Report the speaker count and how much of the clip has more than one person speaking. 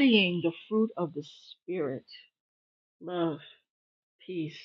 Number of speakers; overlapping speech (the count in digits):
1, no overlap